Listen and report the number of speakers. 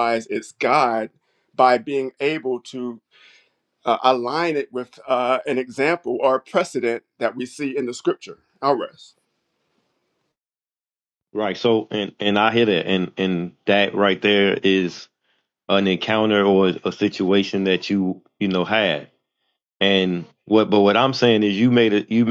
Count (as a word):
two